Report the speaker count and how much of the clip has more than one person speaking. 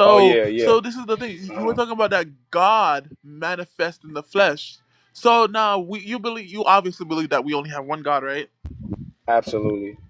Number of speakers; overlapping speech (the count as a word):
two, about 10%